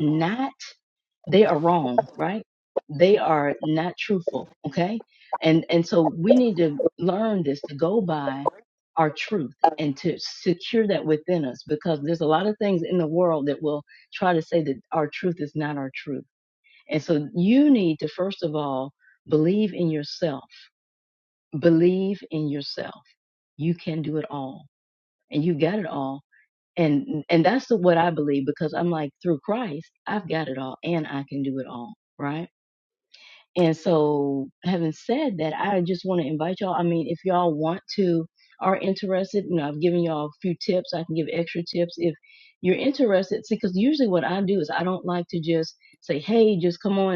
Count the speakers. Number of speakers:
1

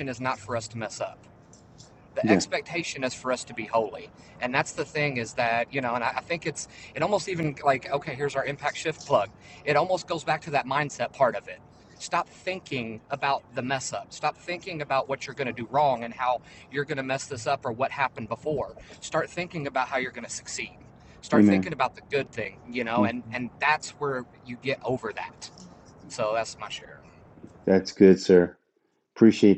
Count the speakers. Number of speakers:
2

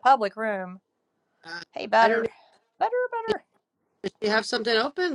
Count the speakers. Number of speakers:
2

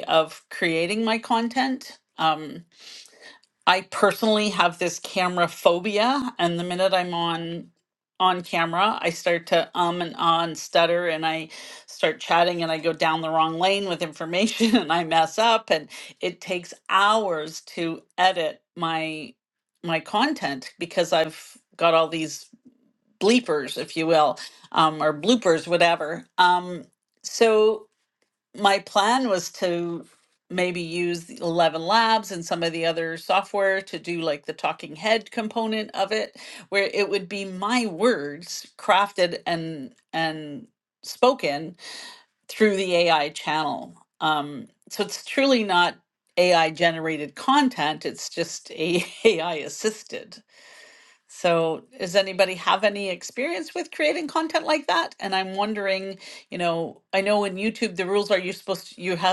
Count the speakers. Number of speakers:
1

